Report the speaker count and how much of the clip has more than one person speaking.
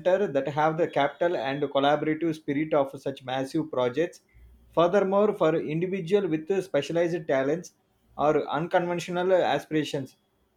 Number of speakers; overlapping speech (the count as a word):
one, no overlap